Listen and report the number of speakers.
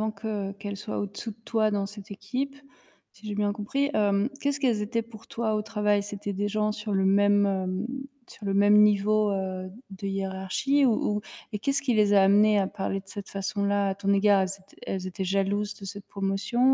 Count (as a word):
one